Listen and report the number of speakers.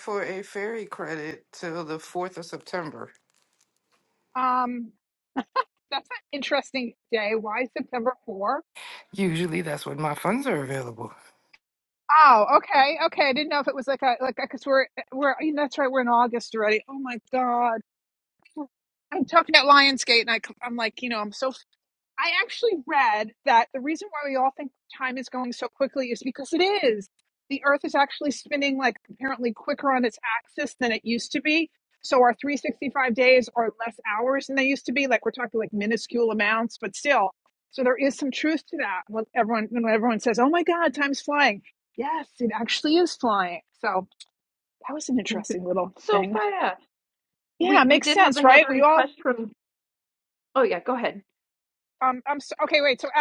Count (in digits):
3